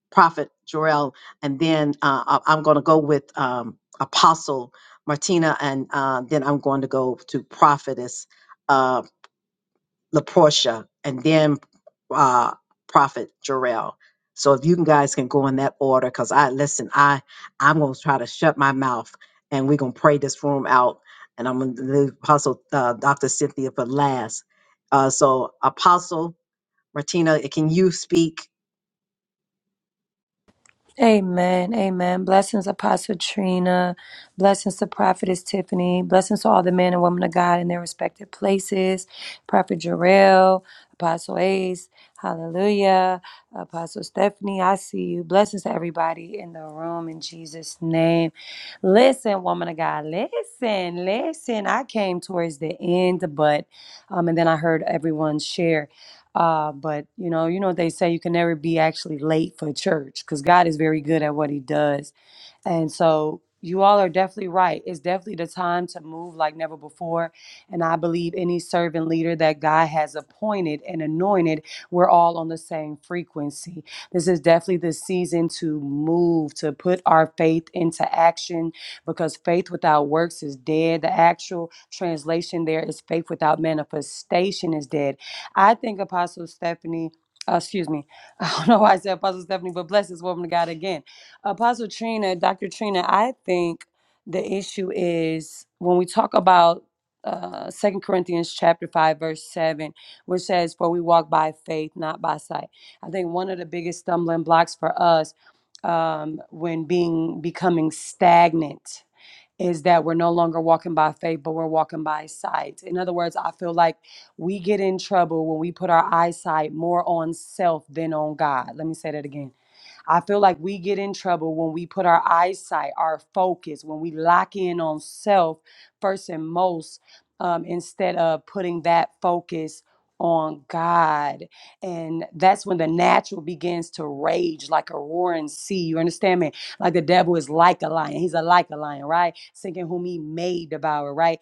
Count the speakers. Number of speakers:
two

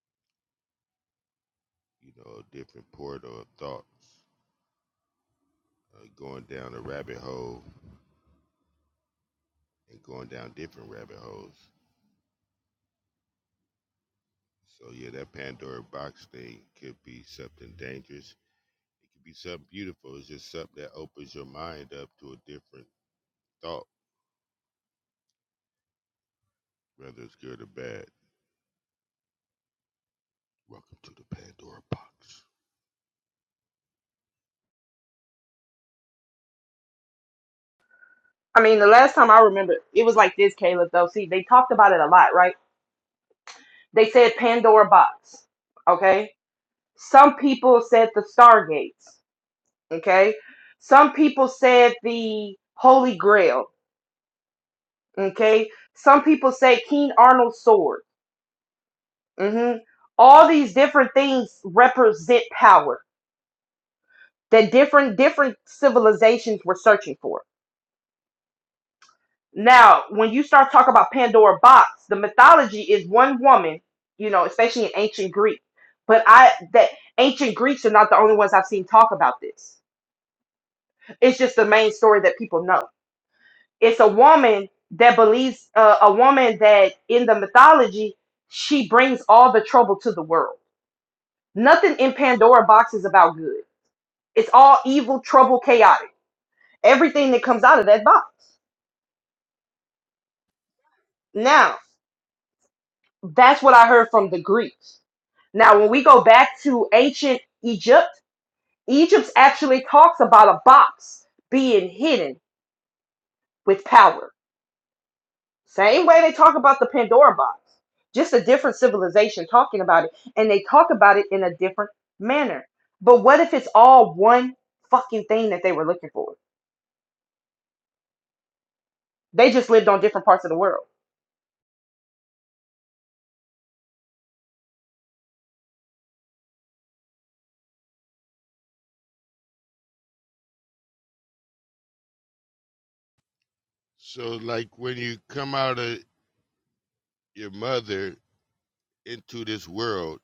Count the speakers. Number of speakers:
two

